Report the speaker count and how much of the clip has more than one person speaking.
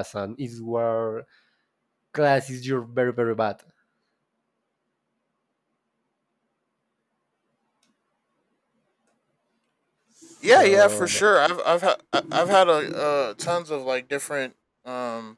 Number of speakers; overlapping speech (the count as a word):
two, about 4%